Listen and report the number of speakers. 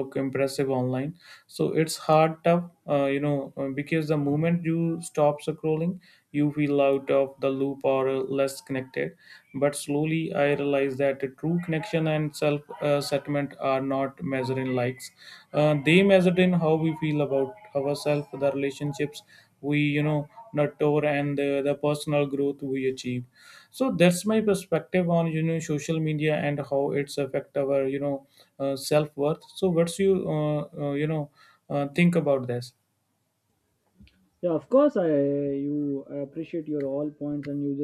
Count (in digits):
2